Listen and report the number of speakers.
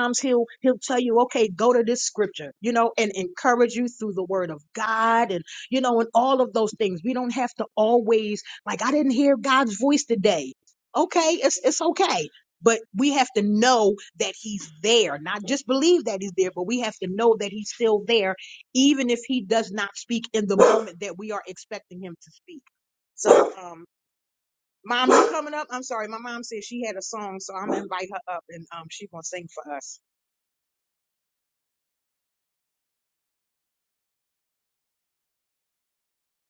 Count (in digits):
1